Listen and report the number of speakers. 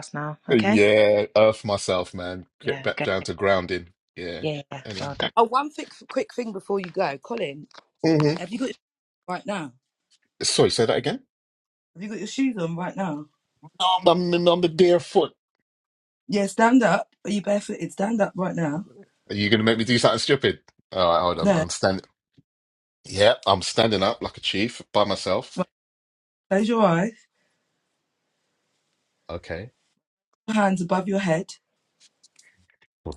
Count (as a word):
three